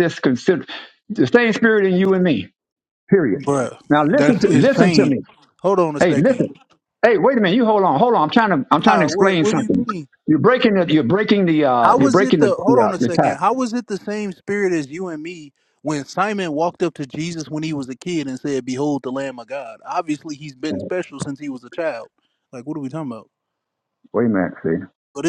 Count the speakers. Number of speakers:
two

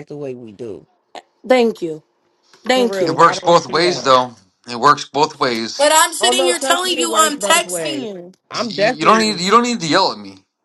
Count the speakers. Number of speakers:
three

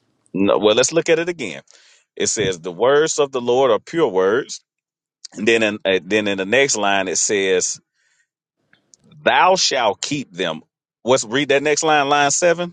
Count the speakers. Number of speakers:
one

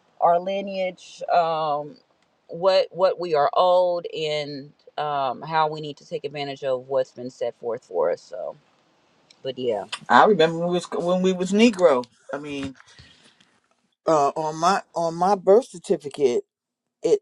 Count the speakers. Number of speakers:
two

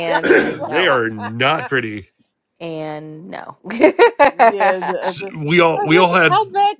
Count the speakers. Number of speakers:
three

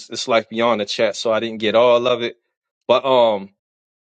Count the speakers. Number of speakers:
one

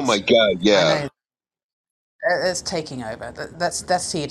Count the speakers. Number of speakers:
two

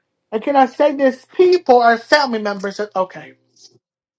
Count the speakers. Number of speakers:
one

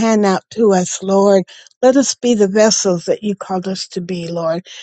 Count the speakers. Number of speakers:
one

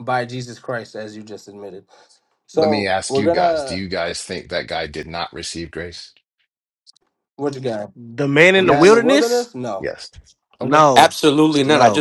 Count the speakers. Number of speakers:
four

